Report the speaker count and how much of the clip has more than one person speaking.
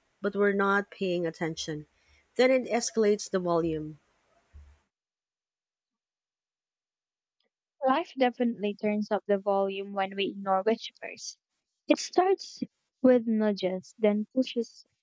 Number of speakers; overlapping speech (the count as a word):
two, no overlap